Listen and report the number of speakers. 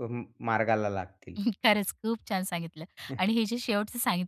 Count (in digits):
2